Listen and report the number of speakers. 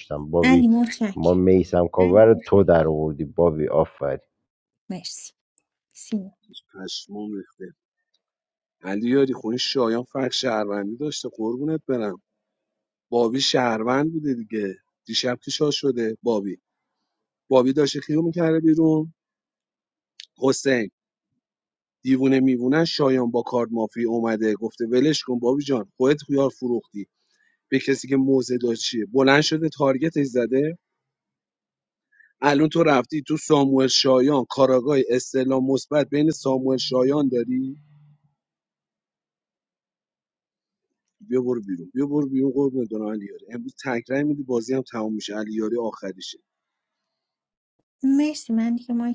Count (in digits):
3